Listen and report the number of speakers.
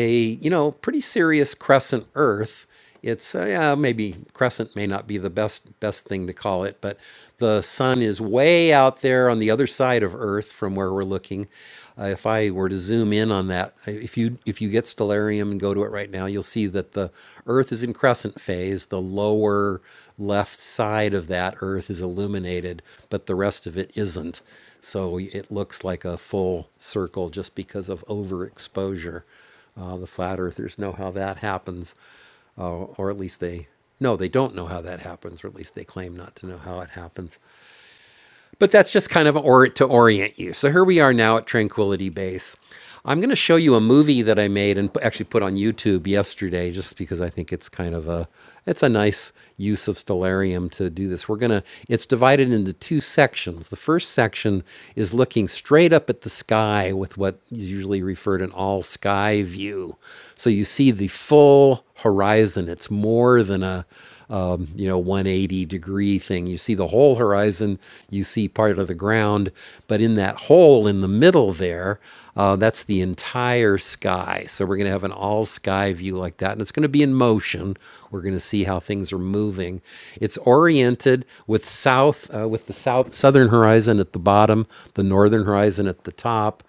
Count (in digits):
1